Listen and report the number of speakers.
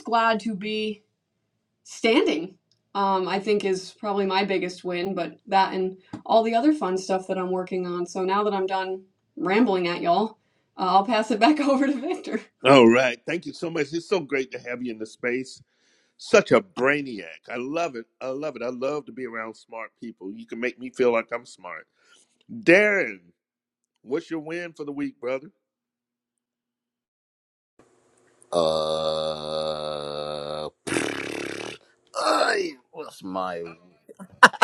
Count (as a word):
three